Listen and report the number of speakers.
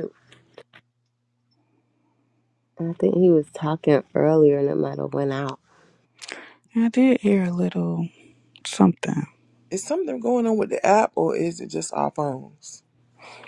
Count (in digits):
3